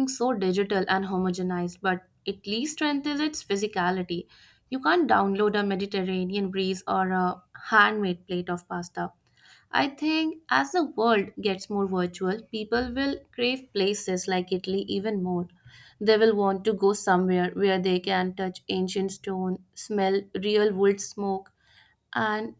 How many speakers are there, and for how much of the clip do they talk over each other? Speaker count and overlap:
one, no overlap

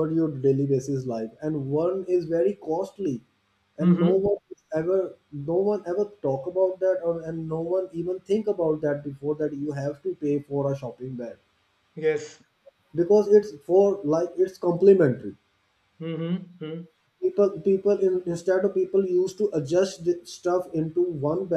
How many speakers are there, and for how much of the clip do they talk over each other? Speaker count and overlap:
two, about 2%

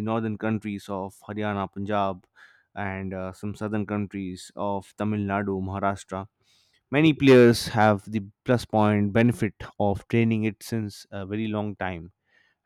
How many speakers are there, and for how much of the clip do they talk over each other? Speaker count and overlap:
one, no overlap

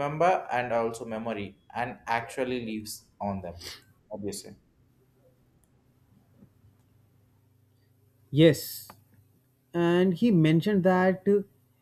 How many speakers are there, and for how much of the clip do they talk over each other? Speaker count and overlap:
two, no overlap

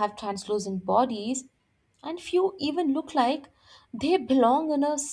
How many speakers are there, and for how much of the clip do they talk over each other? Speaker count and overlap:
one, no overlap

